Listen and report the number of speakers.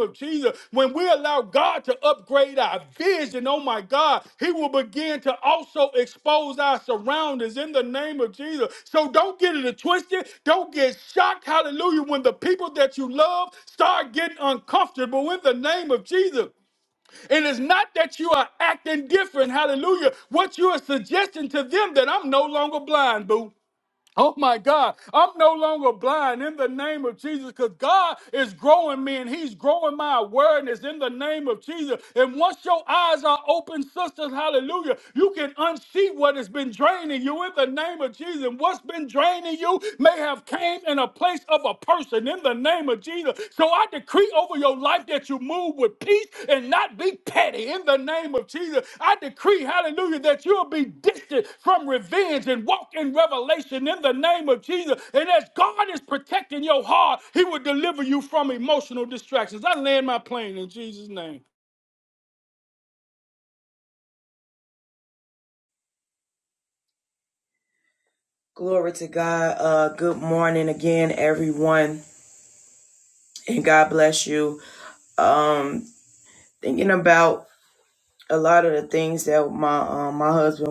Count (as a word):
two